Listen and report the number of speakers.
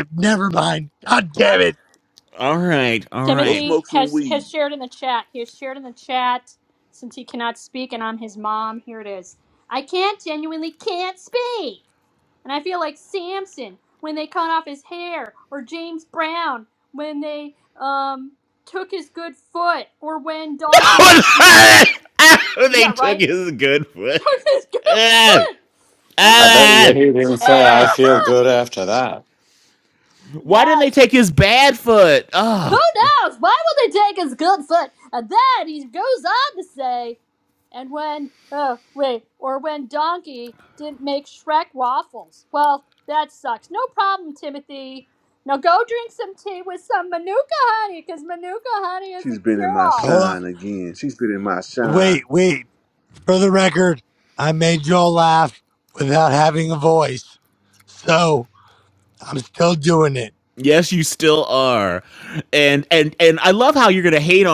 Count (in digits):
5